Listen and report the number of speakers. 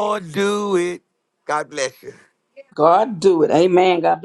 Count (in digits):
2